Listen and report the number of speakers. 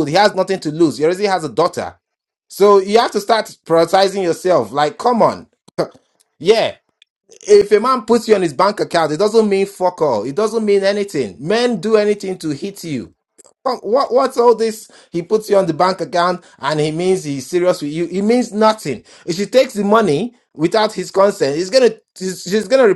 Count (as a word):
one